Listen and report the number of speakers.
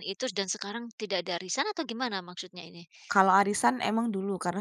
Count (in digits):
2